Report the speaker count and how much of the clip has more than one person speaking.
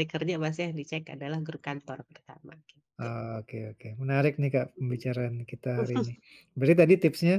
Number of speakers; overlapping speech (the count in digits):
2, about 2%